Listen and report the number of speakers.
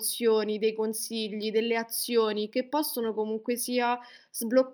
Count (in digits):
1